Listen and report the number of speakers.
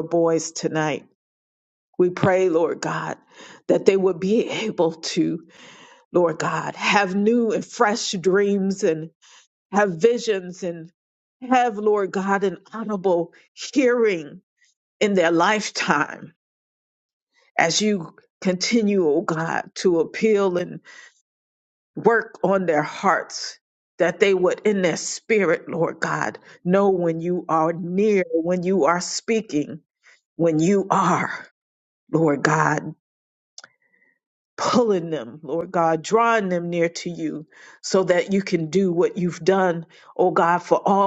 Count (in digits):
1